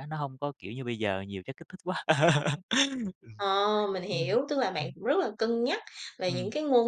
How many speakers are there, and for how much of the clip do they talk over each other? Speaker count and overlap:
2, about 7%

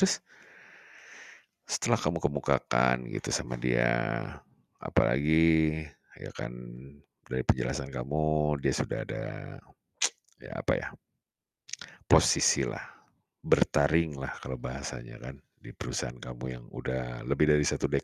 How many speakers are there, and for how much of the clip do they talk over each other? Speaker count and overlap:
1, no overlap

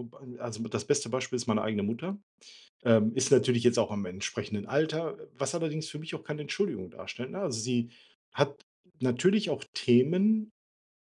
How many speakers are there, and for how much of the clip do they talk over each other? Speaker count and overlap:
1, no overlap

